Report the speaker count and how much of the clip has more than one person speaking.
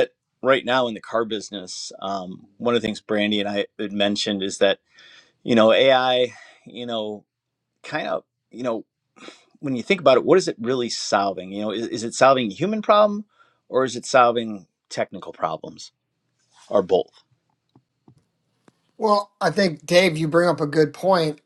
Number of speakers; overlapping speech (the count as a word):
two, no overlap